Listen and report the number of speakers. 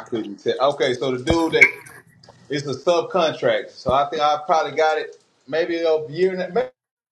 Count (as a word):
one